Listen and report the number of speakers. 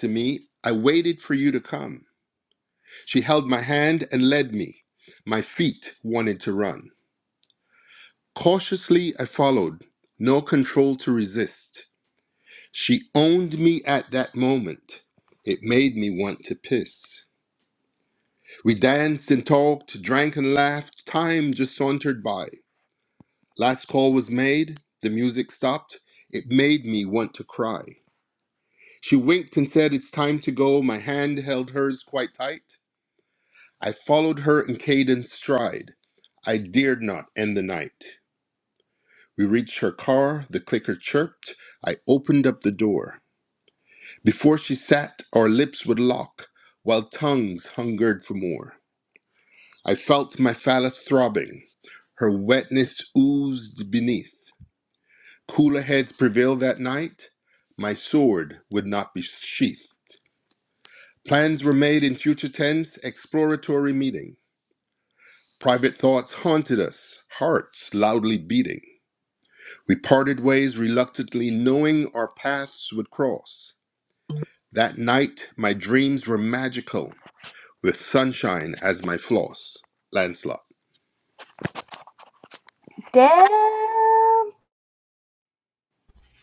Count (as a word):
two